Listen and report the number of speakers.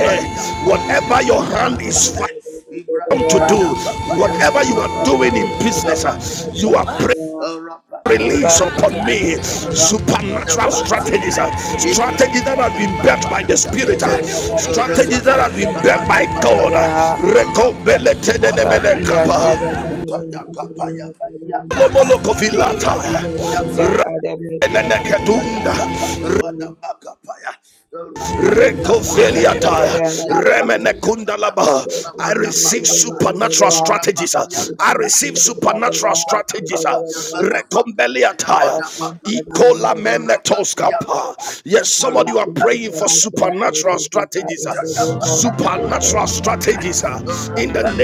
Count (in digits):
3